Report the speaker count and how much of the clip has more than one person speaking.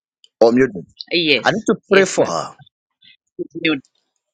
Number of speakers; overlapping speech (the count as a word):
two, about 12%